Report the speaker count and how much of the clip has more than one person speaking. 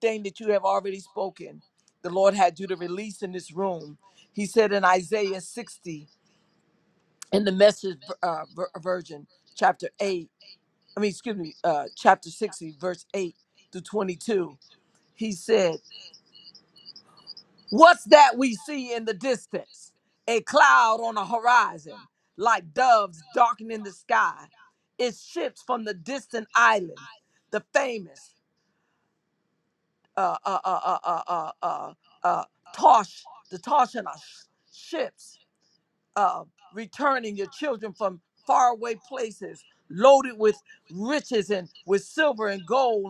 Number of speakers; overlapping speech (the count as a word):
one, no overlap